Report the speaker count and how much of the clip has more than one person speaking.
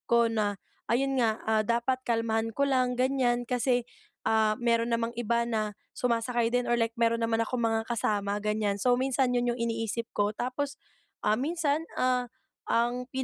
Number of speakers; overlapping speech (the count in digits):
1, no overlap